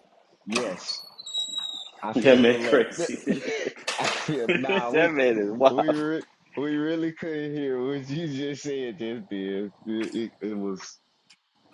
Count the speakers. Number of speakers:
two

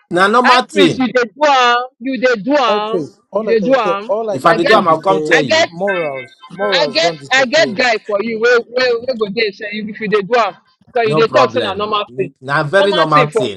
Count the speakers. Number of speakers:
three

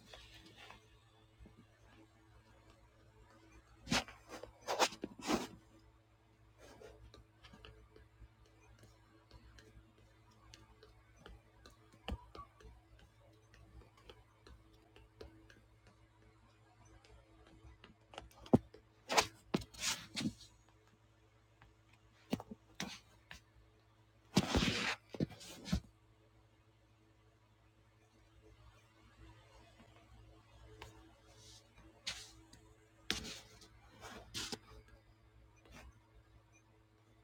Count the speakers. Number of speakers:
zero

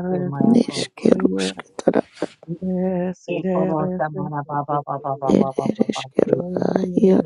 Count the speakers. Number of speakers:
three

